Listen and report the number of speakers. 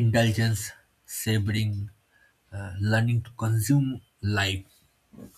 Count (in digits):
1